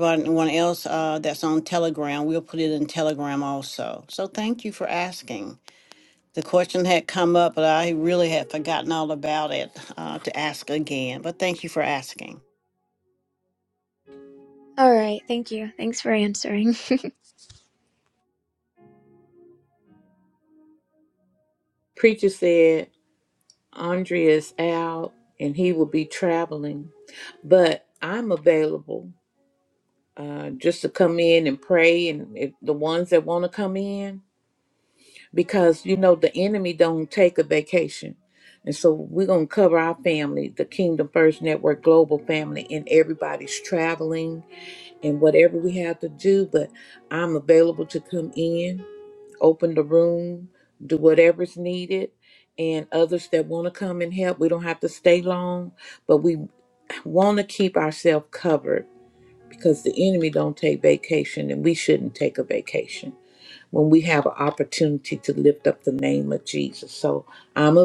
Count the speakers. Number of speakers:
three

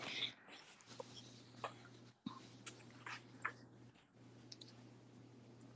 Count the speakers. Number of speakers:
zero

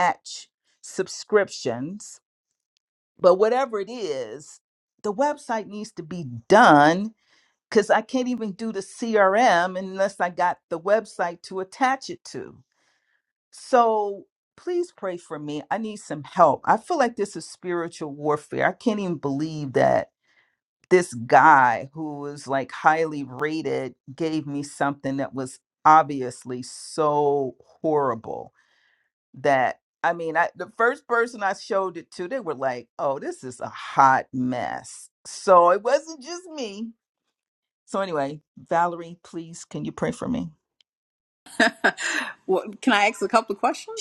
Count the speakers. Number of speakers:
two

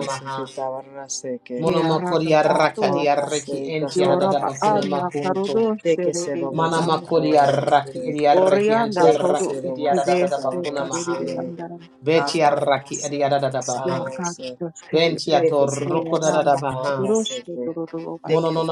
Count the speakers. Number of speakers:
three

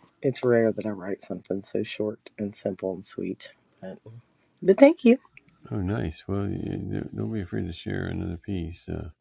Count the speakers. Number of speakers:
two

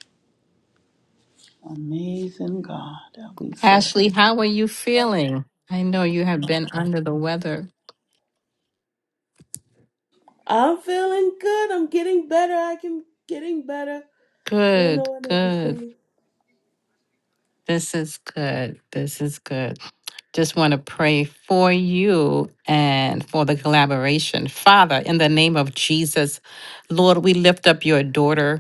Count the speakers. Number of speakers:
three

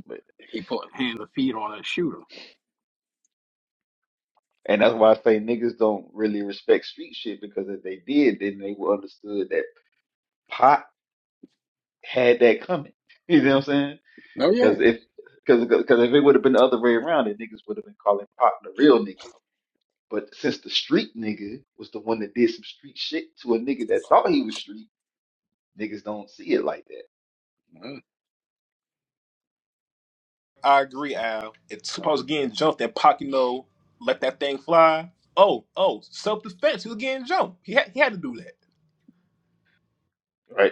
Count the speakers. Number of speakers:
three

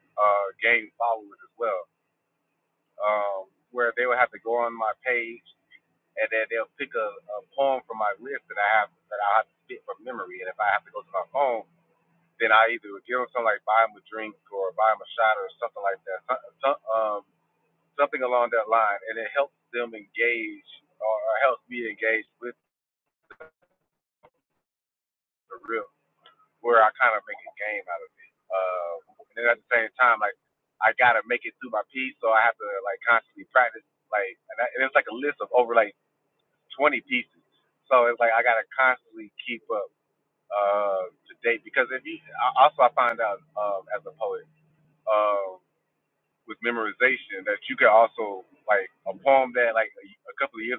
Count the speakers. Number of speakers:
one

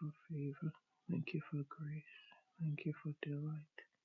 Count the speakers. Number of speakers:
one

